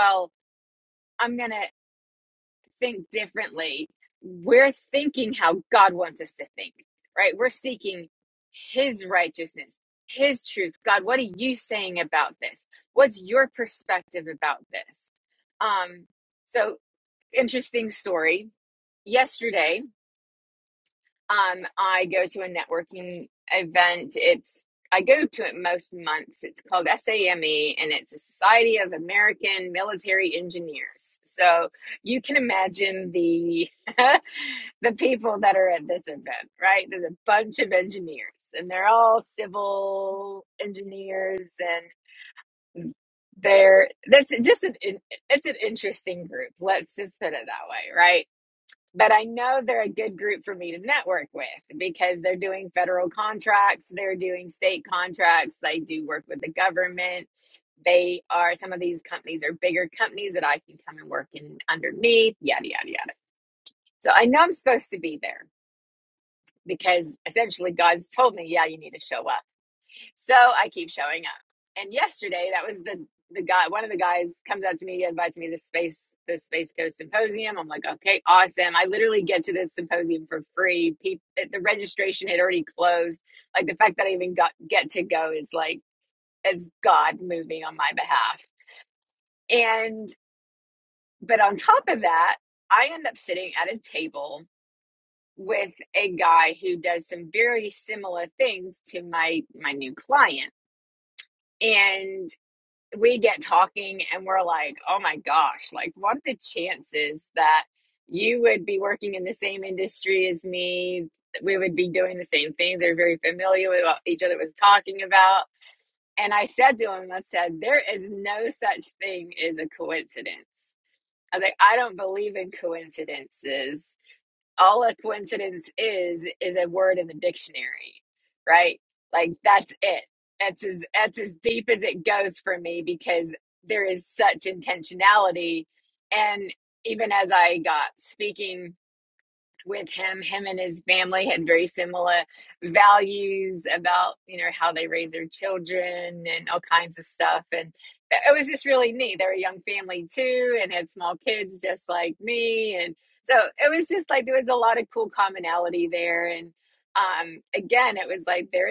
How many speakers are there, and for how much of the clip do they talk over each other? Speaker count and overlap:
1, no overlap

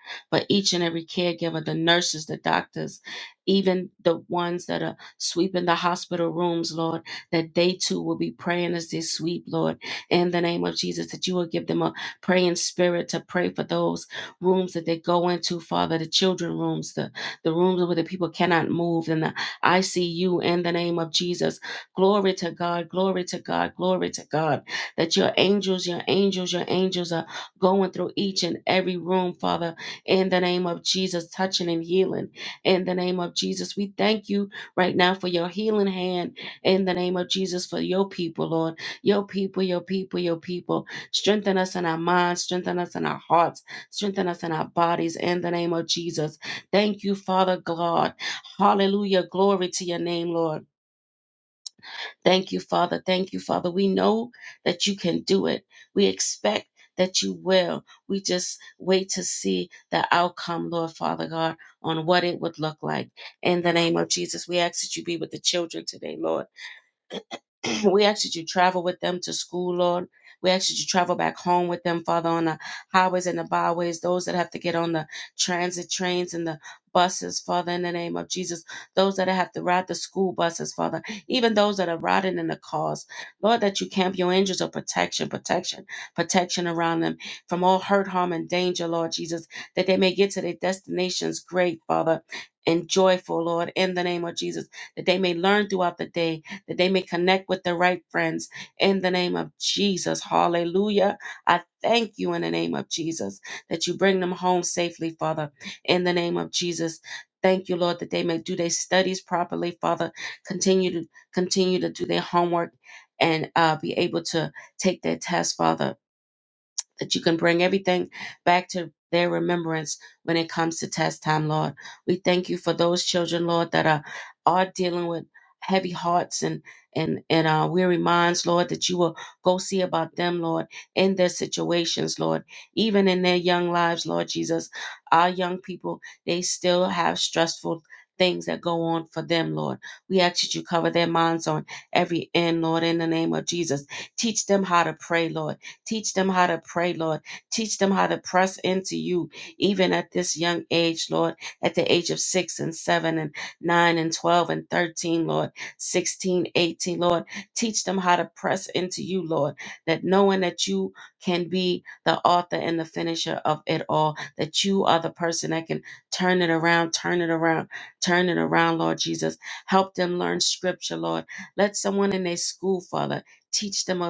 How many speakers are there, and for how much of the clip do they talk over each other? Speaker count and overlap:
1, no overlap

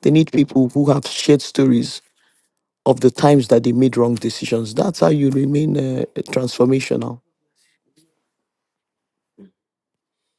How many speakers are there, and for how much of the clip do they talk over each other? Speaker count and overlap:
1, no overlap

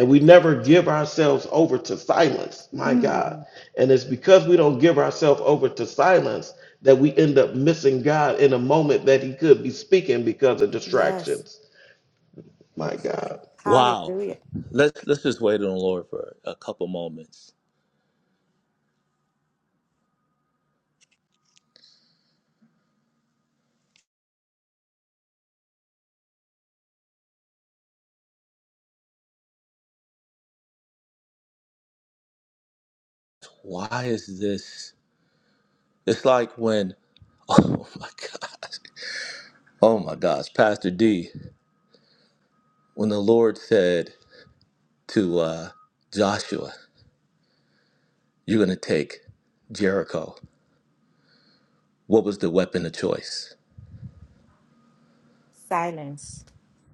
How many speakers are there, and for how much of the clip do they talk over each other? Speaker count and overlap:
3, about 2%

